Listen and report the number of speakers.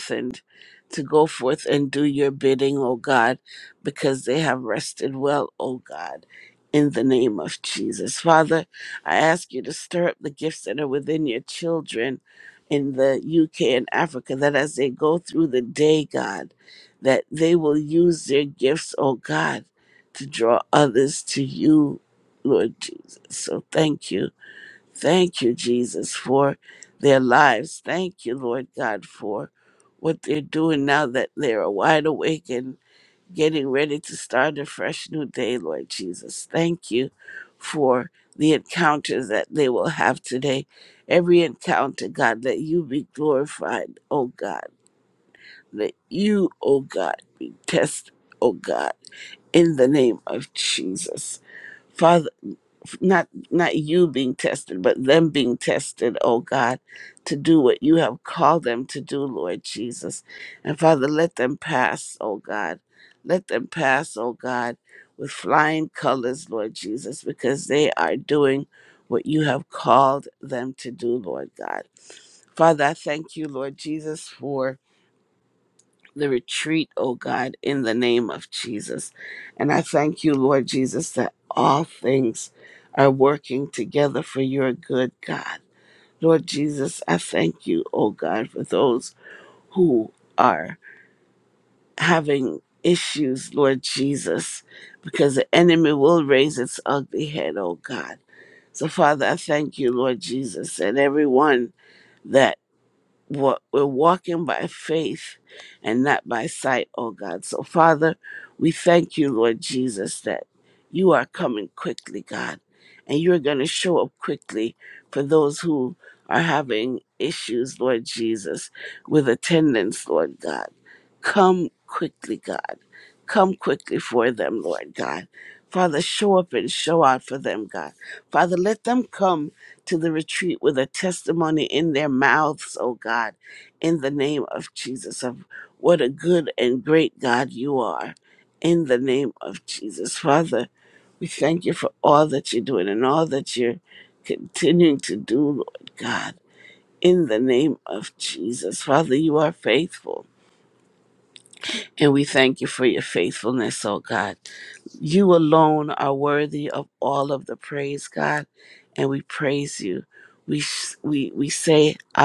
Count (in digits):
1